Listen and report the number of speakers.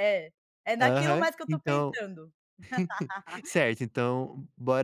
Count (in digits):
2